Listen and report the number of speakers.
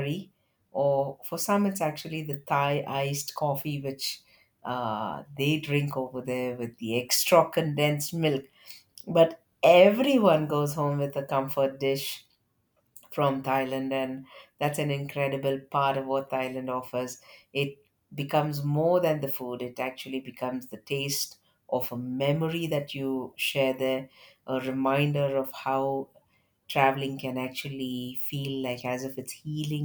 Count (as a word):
one